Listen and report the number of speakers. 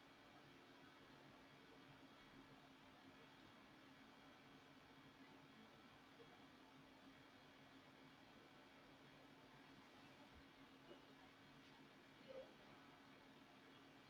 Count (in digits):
0